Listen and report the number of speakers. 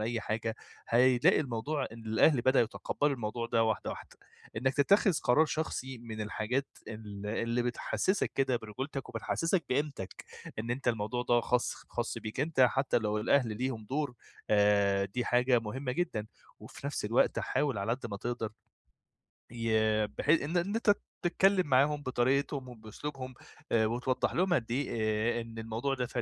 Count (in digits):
1